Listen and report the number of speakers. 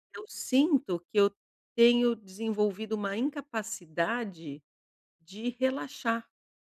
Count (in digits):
1